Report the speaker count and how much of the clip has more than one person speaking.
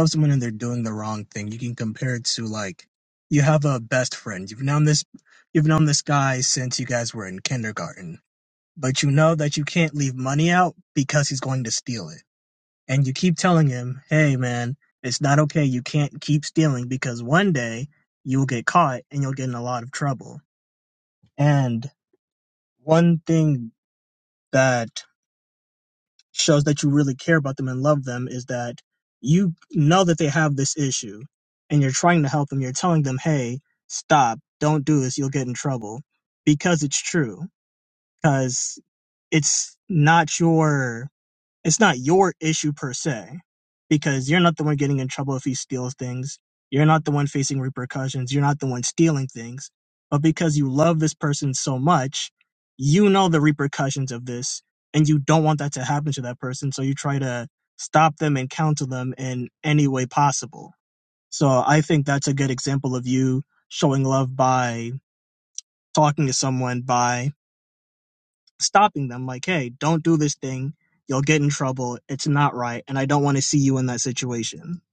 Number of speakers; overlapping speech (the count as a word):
one, no overlap